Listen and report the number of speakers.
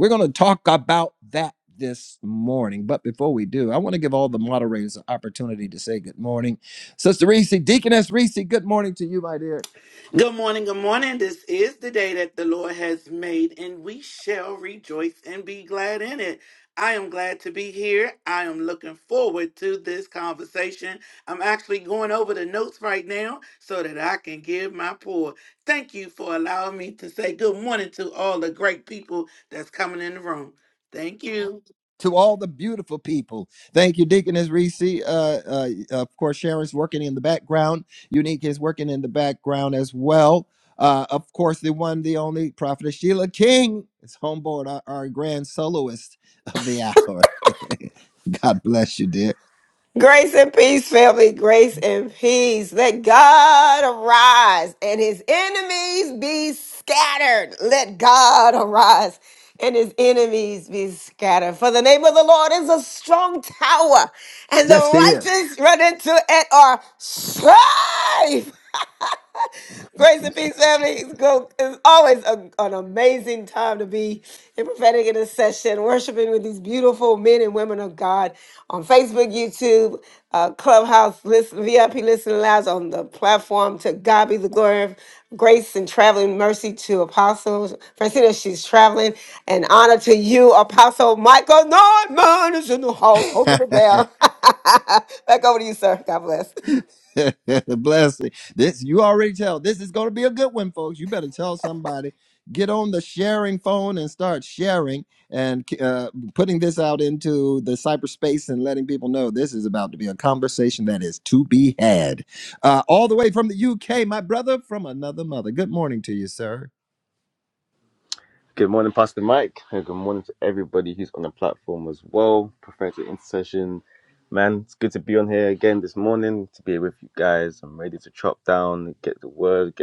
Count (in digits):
4